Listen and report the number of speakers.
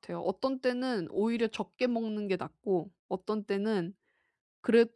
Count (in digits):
1